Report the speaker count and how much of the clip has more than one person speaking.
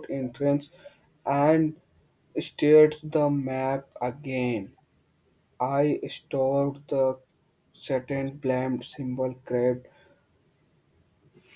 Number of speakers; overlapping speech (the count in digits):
1, no overlap